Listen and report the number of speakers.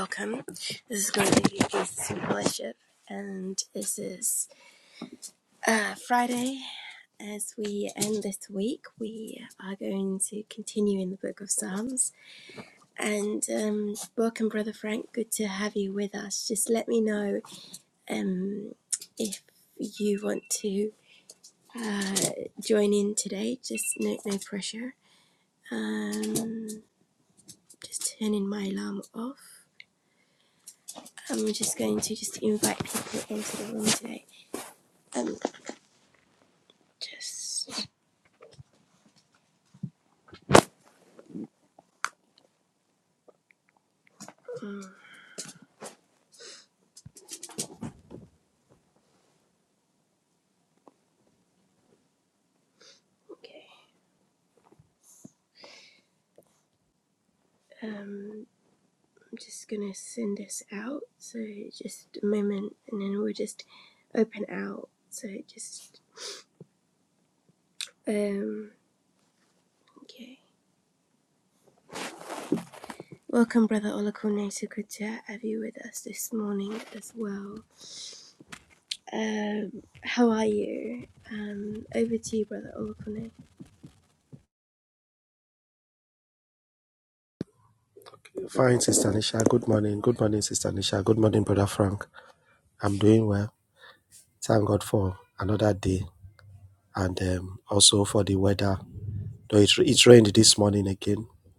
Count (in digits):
2